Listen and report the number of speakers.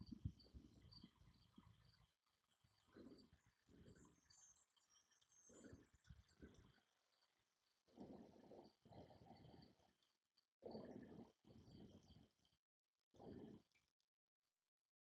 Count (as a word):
zero